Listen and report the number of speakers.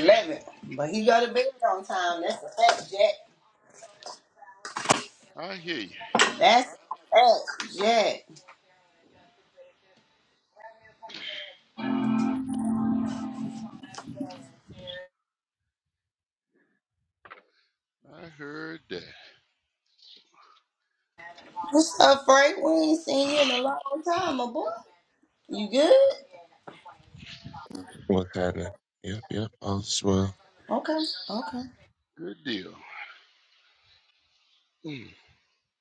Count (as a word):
three